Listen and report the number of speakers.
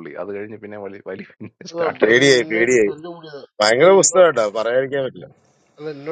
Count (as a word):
three